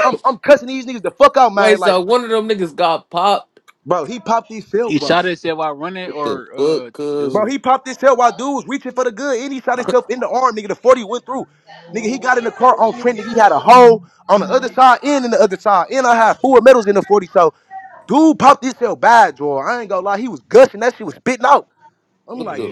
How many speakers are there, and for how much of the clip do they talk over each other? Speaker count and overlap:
3, about 11%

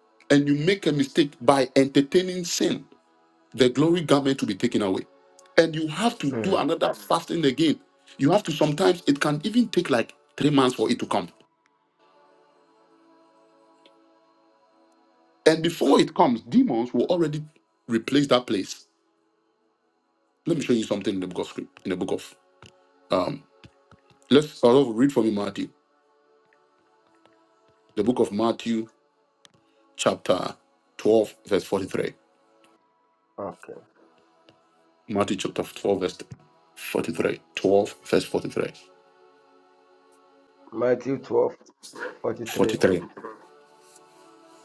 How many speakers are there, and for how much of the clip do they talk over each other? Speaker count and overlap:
2, about 1%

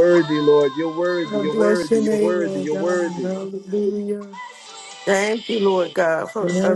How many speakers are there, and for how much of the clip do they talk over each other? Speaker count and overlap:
3, about 36%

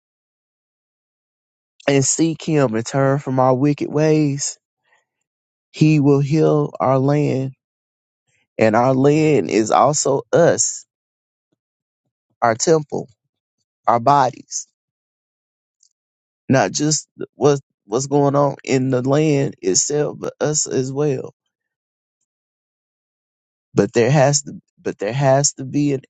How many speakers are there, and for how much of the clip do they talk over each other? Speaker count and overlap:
1, no overlap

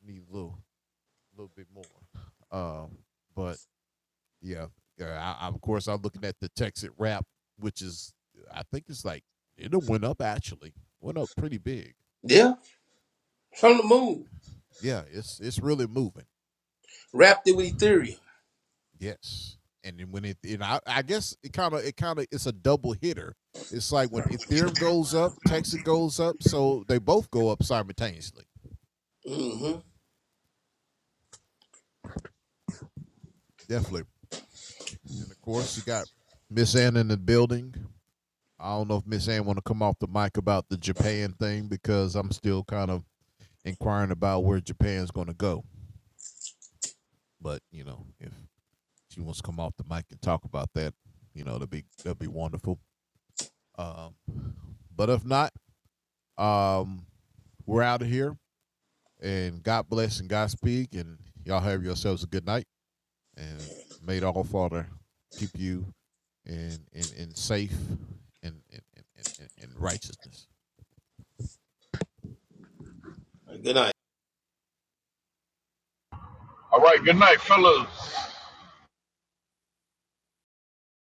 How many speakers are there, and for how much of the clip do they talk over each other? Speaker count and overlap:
3, no overlap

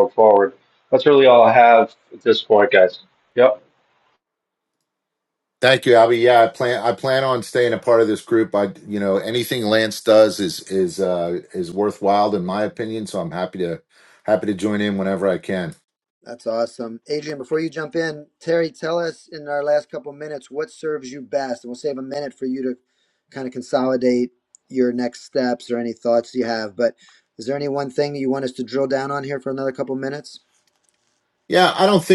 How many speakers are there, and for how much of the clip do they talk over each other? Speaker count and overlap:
3, no overlap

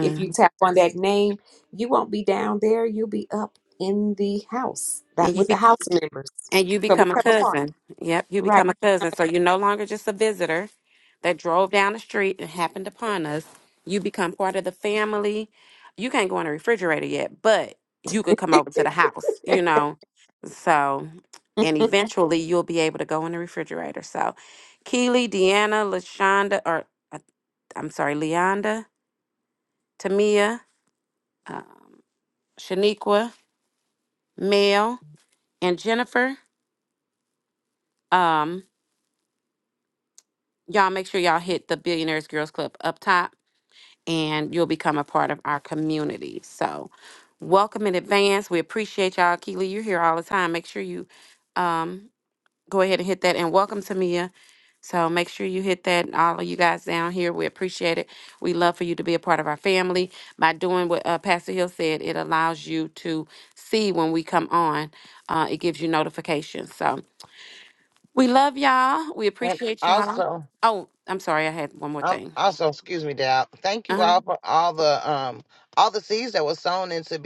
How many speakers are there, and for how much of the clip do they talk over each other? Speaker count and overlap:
3, about 4%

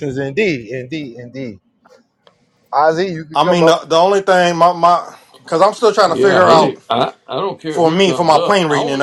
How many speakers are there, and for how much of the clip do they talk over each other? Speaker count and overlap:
3, about 27%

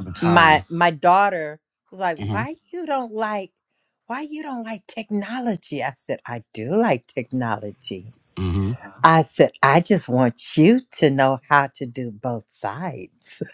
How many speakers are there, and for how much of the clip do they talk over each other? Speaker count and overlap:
2, about 6%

